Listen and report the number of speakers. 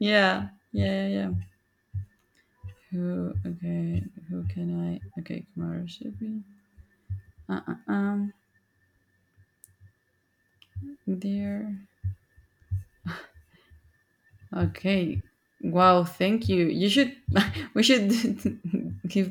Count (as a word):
one